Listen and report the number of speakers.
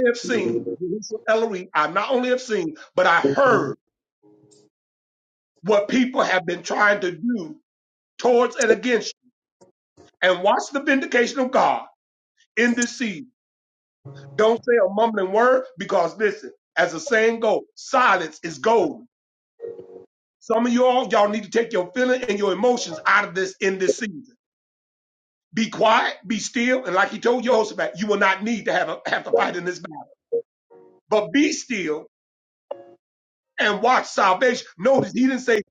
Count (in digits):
1